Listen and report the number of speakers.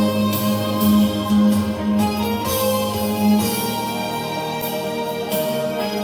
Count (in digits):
0